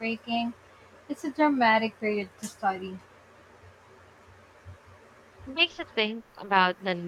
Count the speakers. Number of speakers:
2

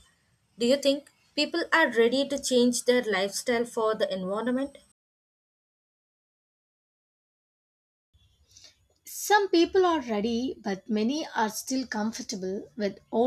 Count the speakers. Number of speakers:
2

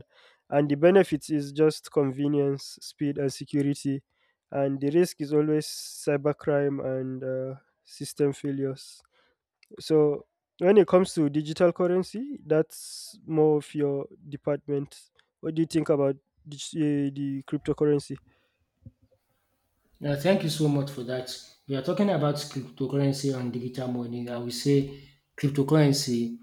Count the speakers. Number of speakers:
2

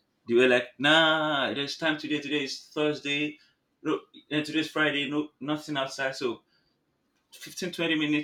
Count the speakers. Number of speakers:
1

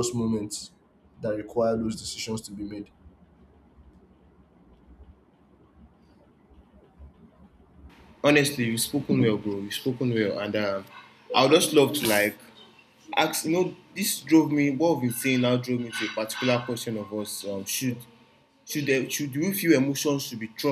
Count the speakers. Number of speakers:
2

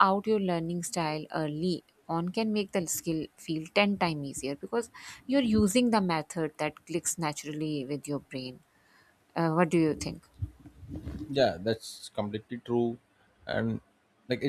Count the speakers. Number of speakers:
2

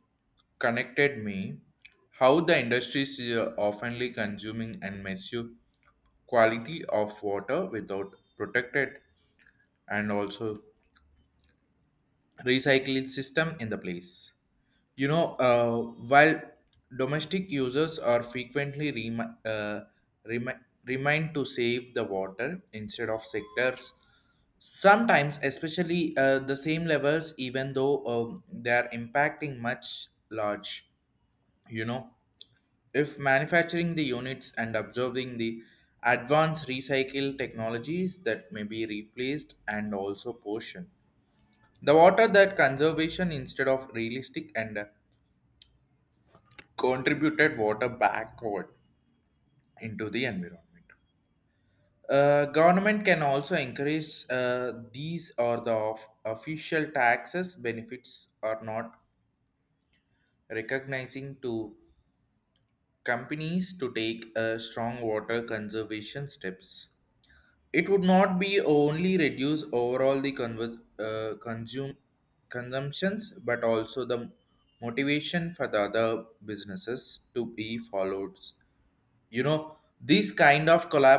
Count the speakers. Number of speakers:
1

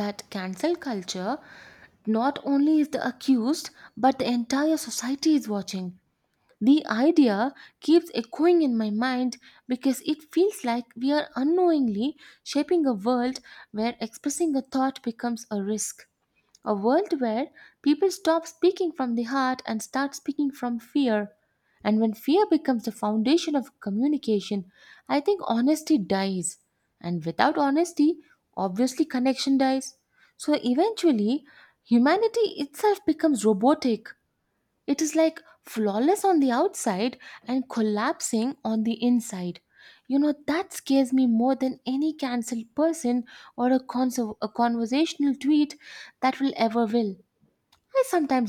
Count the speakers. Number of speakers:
1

